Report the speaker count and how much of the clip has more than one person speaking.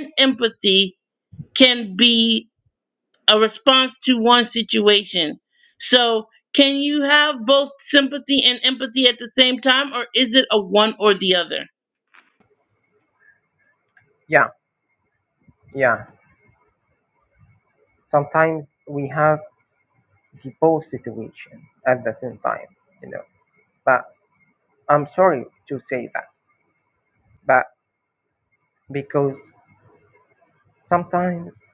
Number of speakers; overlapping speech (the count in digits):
2, no overlap